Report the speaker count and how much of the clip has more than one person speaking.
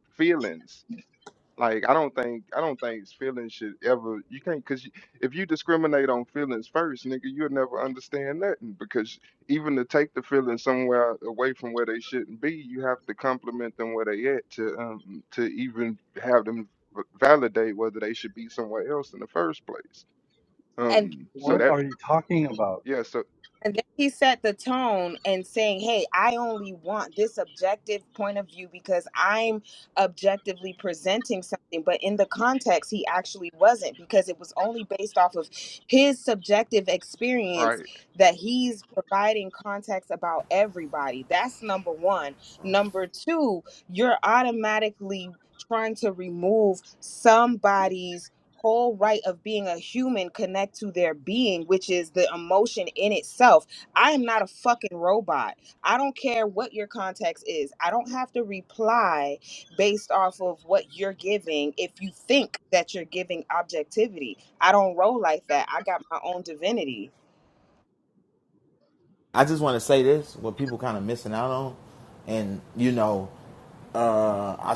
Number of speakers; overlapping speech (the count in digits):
4, about 1%